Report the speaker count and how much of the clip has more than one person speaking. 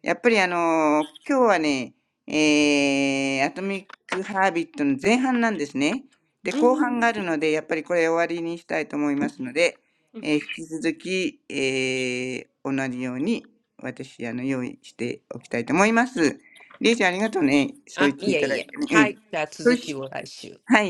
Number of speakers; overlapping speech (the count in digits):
2, about 10%